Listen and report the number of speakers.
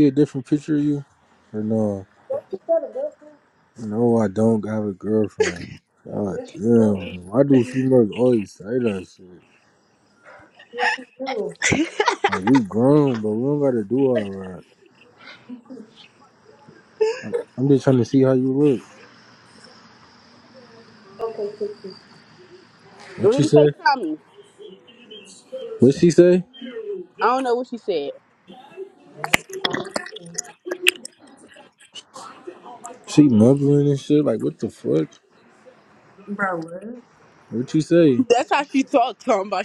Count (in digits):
3